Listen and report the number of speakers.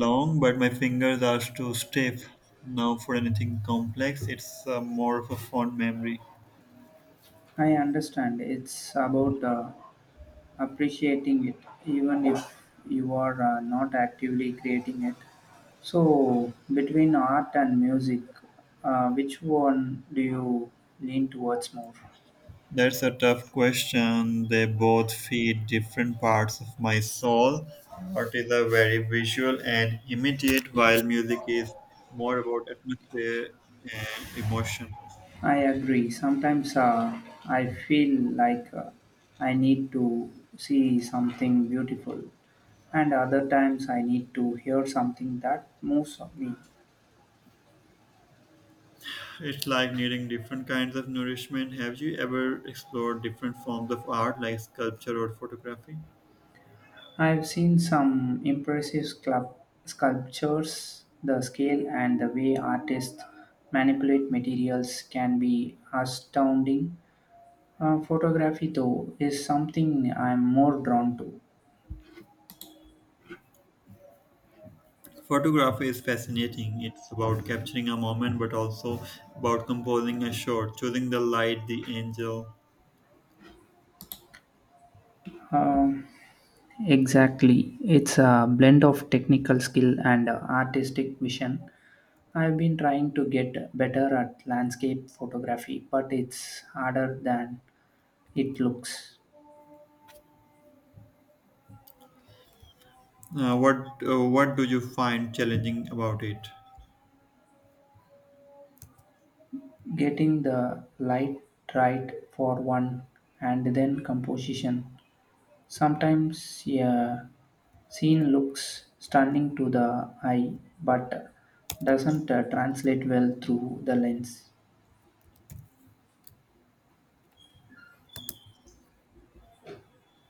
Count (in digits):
2